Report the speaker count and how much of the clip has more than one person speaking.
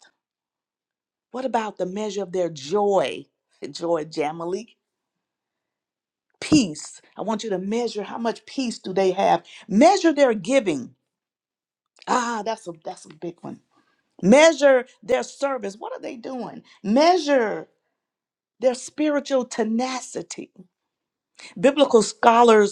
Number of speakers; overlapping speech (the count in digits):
1, no overlap